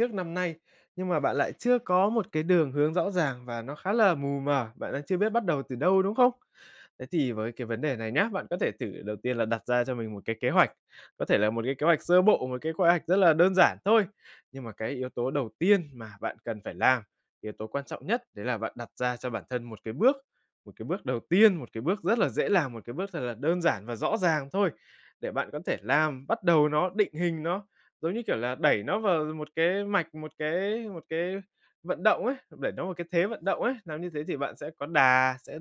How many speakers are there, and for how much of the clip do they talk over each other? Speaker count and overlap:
1, no overlap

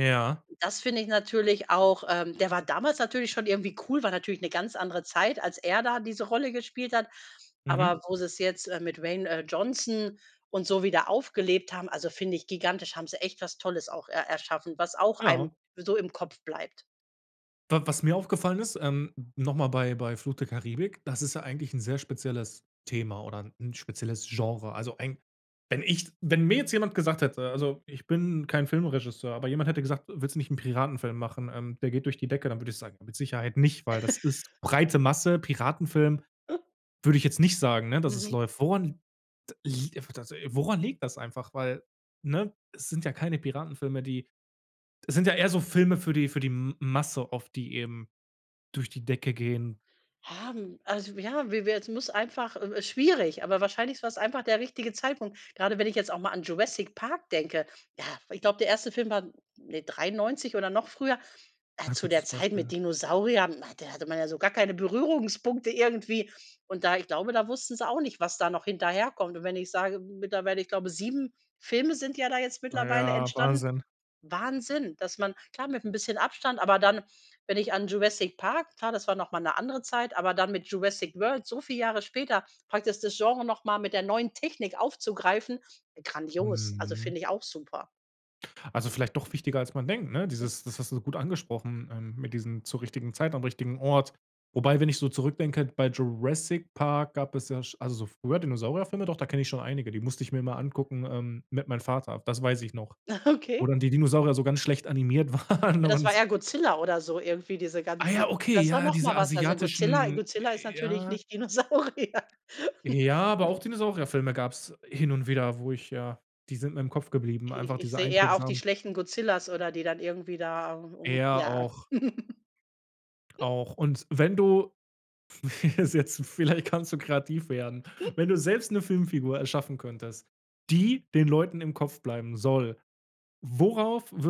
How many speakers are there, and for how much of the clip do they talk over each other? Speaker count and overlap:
2, about 6%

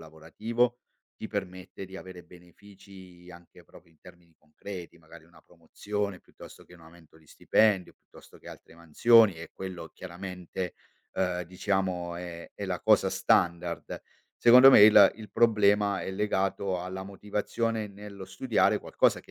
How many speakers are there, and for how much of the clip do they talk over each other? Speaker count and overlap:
1, no overlap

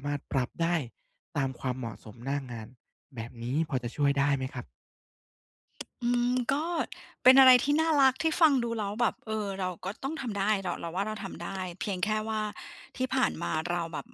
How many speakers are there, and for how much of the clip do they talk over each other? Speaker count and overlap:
2, no overlap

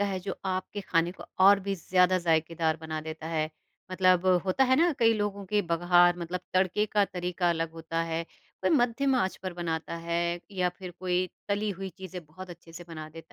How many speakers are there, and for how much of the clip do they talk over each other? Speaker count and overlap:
1, no overlap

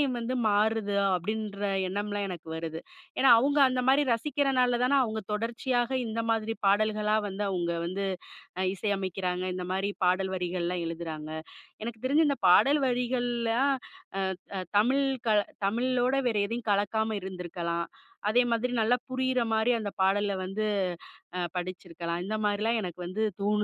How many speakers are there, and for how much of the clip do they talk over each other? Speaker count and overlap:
1, no overlap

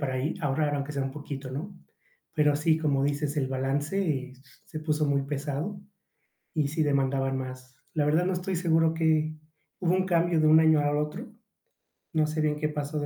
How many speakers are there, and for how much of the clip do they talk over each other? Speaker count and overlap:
1, no overlap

